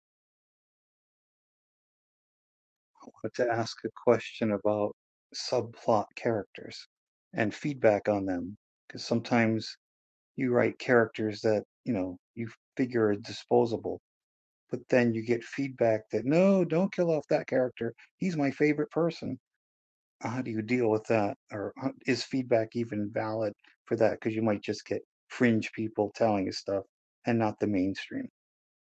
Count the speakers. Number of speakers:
1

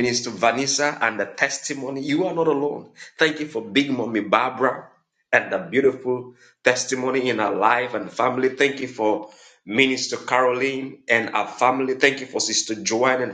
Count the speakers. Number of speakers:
1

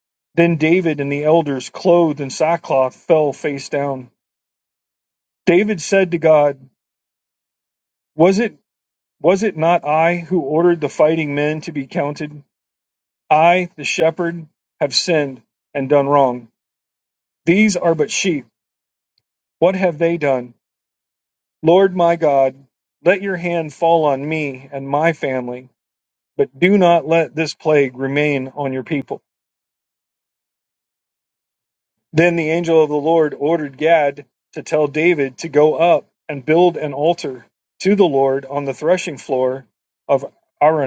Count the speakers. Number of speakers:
1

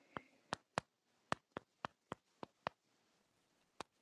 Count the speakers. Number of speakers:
0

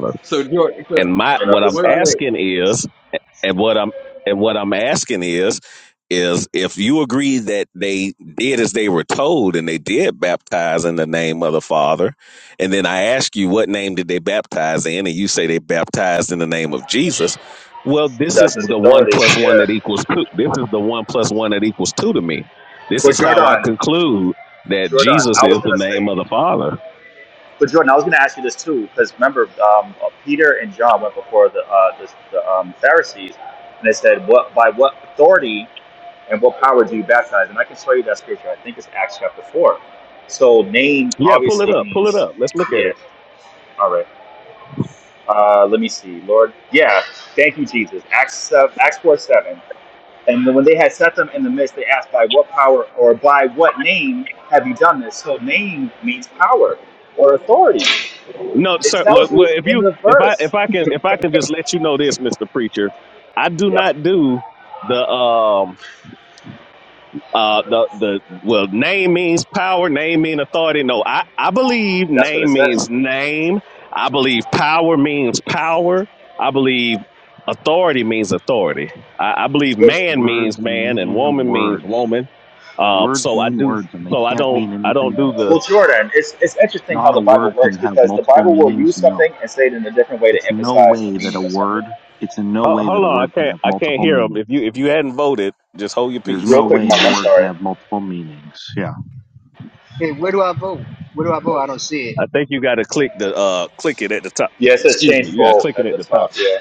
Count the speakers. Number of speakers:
5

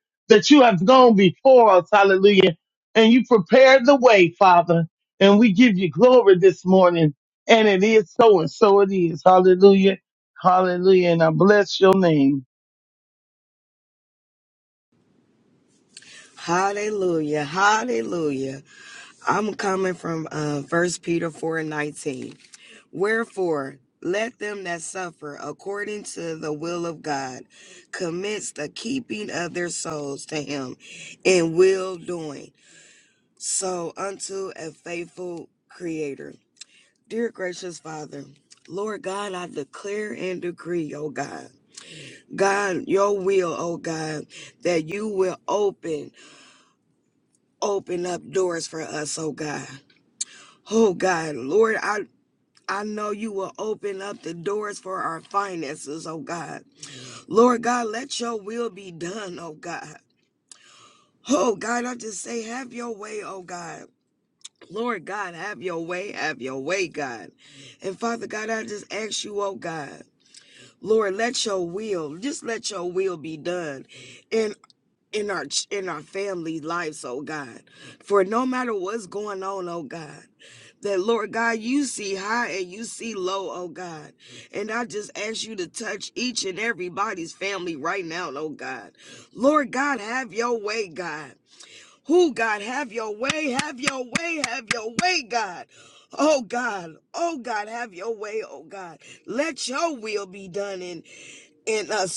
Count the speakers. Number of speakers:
2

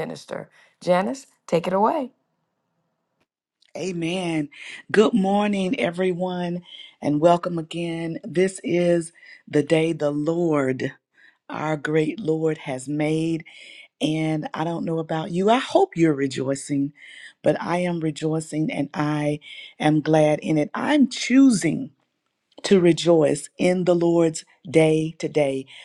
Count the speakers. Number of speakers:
2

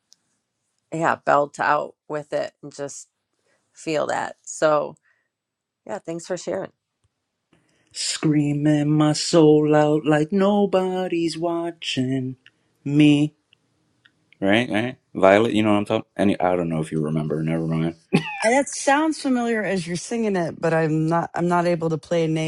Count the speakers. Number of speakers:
3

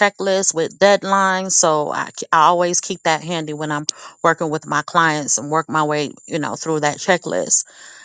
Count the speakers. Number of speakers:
1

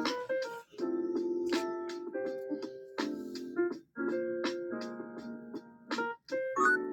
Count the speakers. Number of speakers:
0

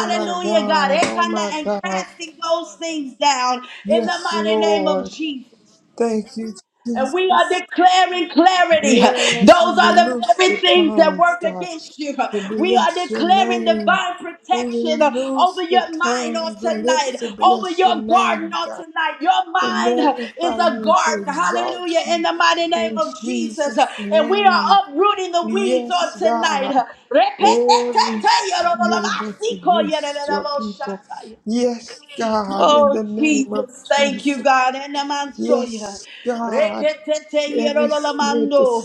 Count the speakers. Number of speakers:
2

